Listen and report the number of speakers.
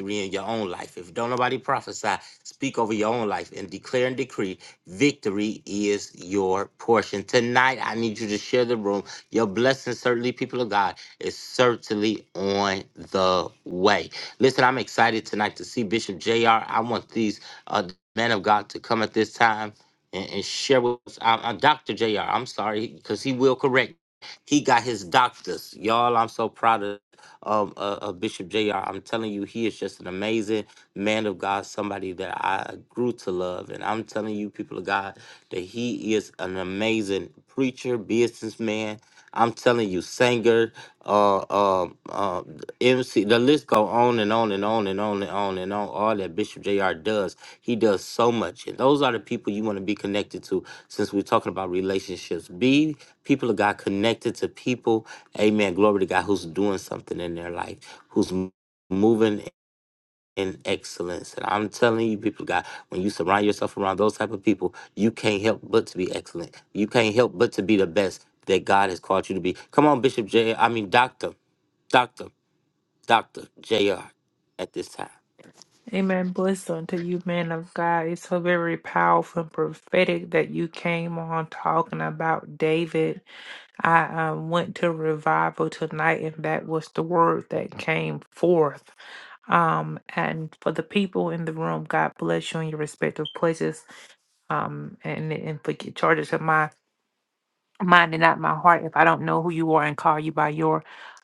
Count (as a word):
two